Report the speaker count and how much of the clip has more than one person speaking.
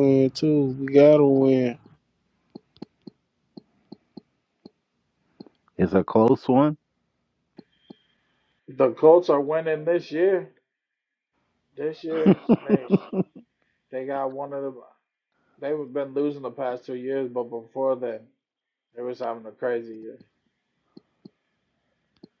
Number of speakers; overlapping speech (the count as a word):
three, about 3%